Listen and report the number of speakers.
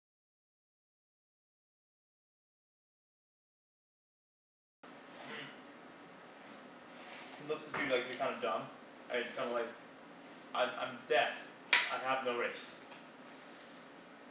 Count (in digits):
1